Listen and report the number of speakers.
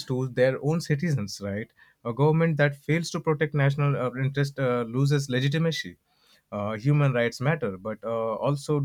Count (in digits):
1